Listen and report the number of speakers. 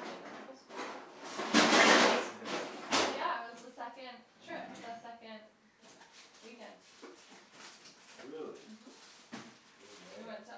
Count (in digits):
2